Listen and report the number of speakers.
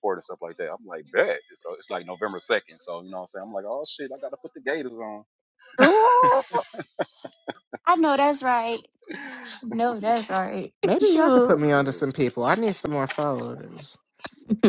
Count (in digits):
3